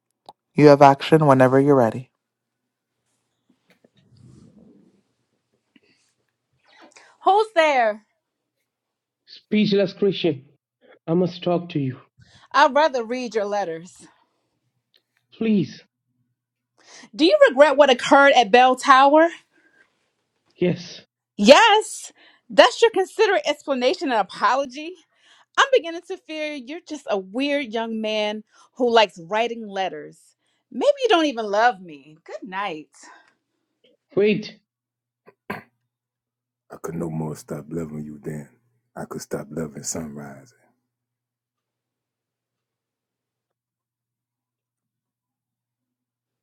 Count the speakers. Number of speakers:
four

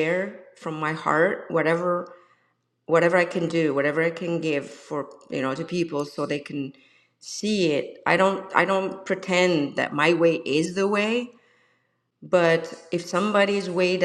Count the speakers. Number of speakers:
one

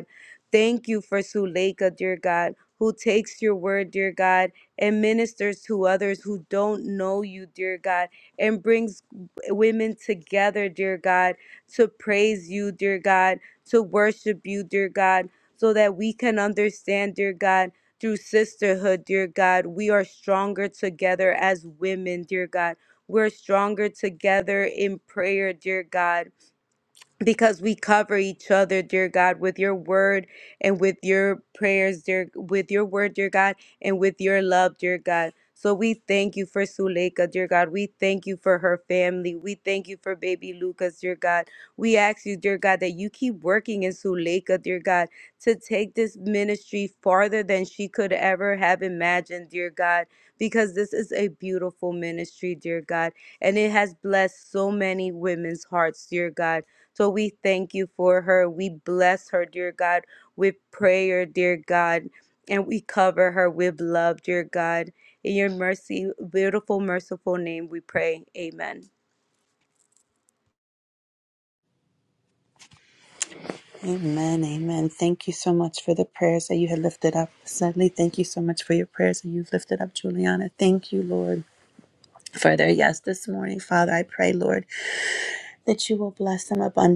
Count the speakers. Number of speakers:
two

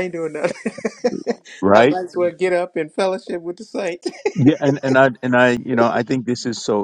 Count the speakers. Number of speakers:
two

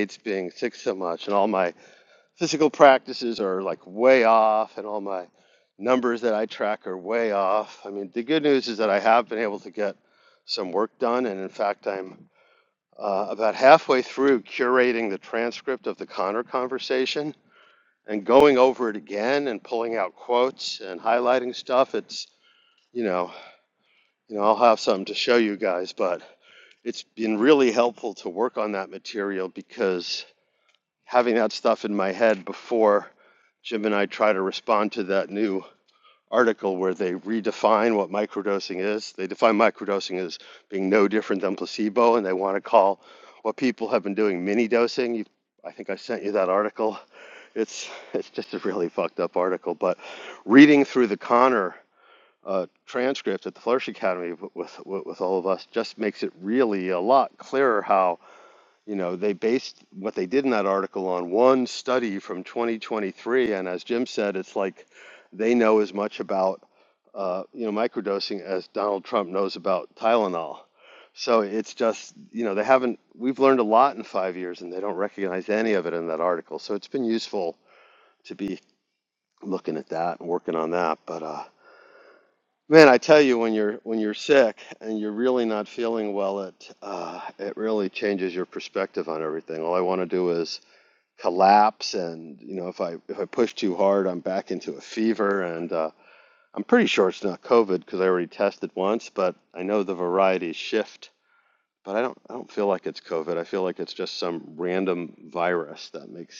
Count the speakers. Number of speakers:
one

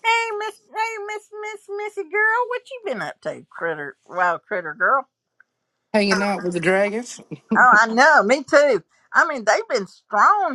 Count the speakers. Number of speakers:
two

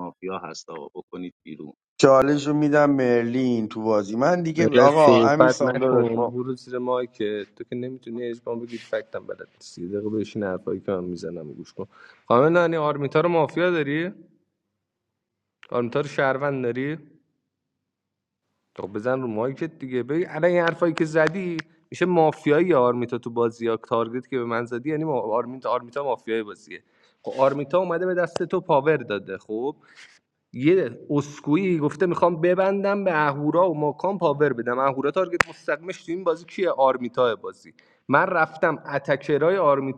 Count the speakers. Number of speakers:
three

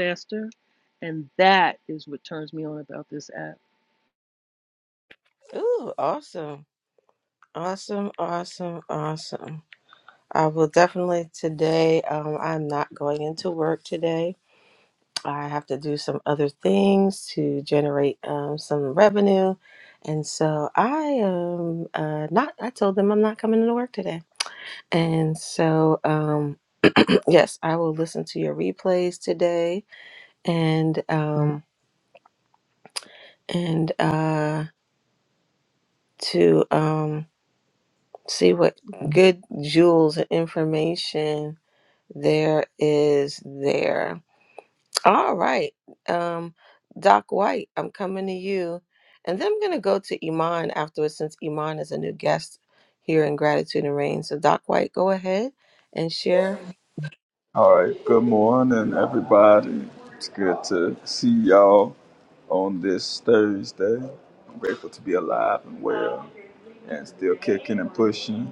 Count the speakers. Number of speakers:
three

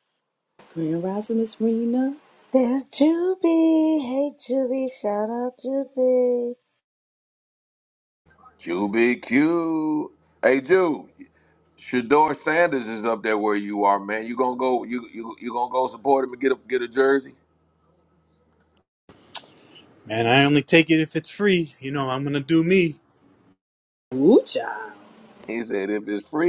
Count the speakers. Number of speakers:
four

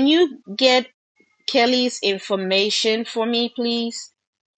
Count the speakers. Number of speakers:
one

